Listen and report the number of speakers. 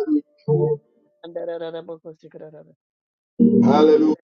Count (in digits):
2